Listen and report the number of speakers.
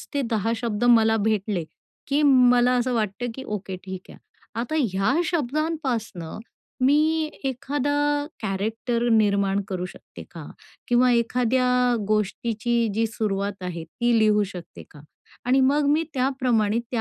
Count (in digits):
1